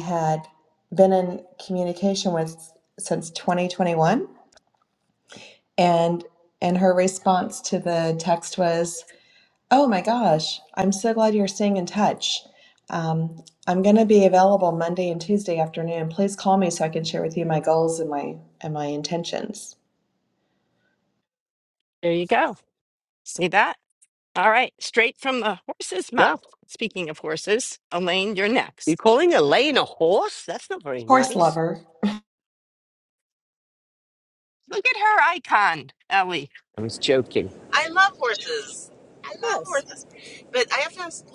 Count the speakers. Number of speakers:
4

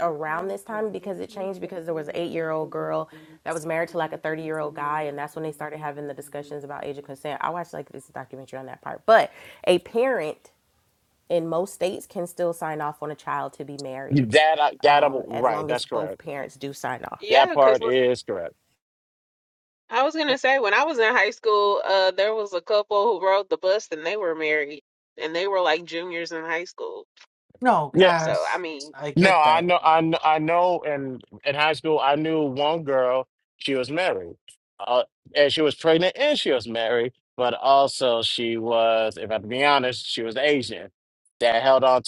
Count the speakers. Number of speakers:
4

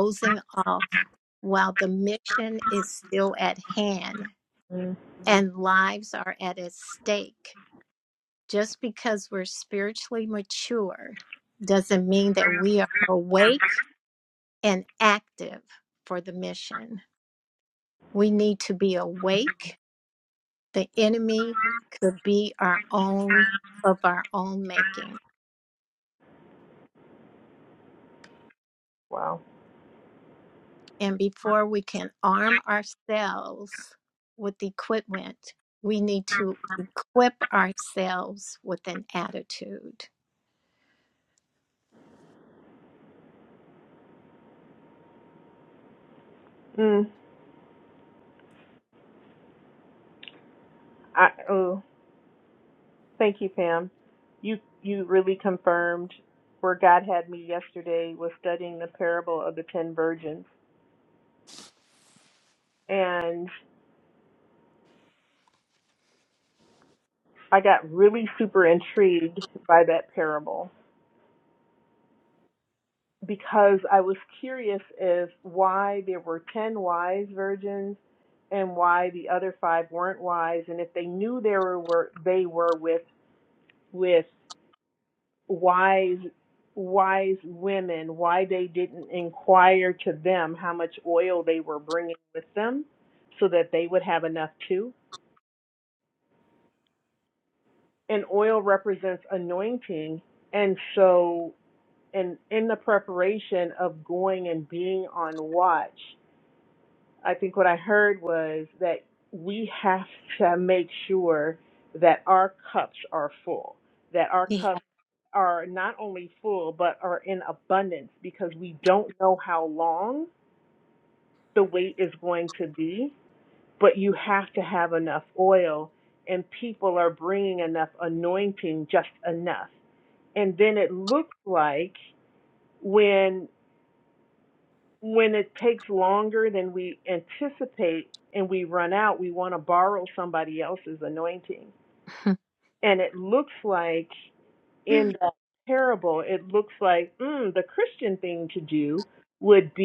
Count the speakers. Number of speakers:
2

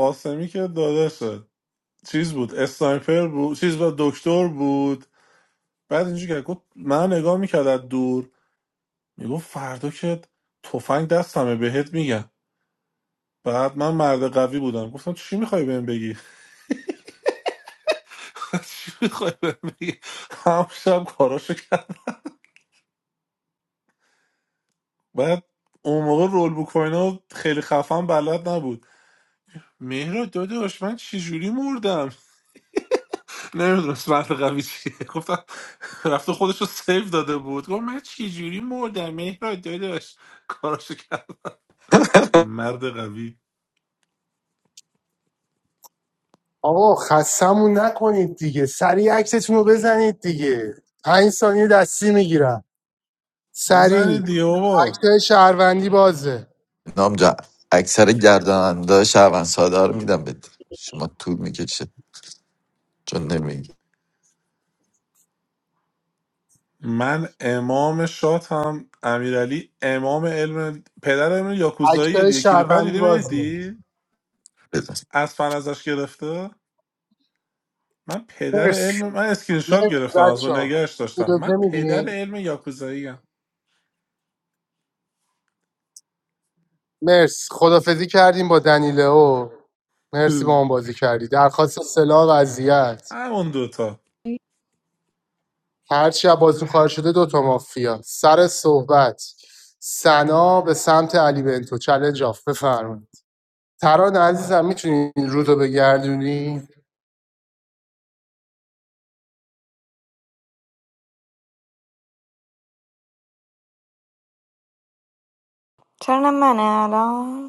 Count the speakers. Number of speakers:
4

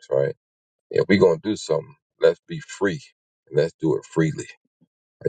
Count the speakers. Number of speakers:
1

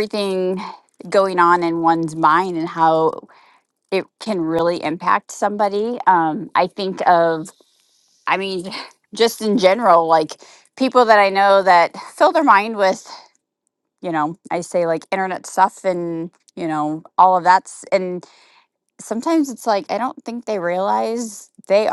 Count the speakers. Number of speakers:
1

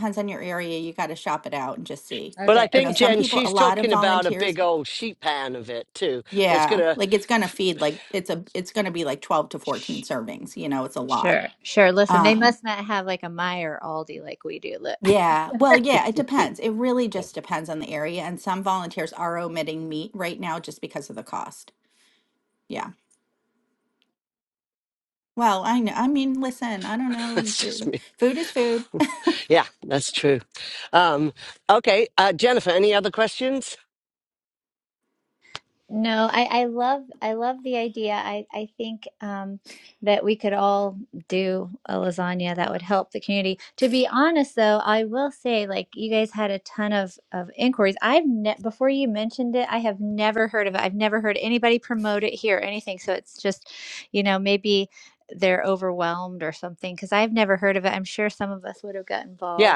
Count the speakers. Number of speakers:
3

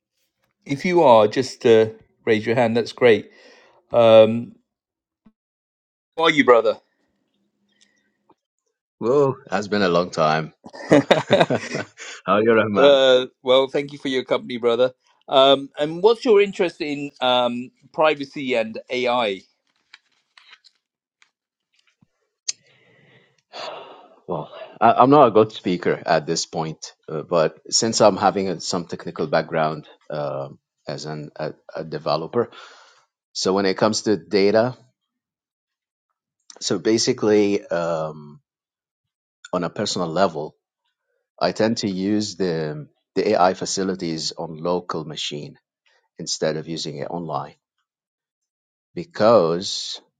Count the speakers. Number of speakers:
2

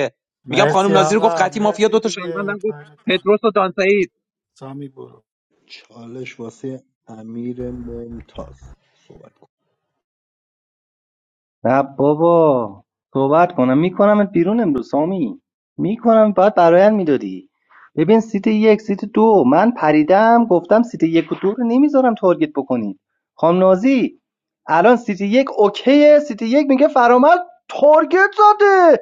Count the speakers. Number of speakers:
4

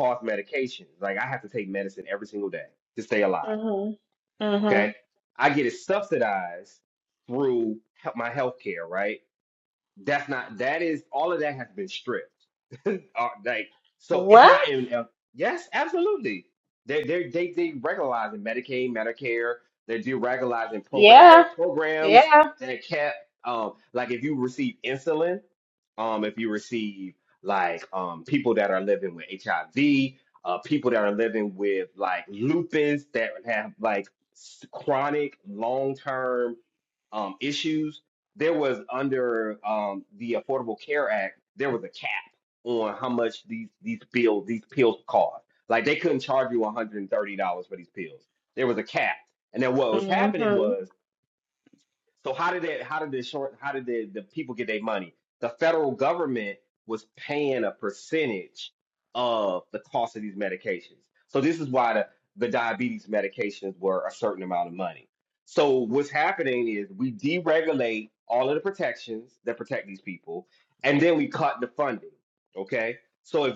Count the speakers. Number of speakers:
2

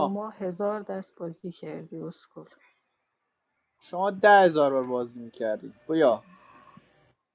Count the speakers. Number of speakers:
2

